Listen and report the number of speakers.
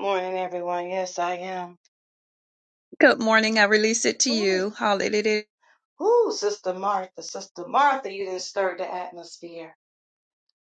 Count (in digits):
2